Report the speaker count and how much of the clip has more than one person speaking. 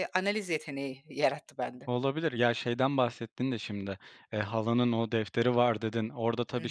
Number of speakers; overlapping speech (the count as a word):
two, about 2%